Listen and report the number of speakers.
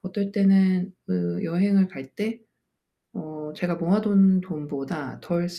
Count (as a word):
one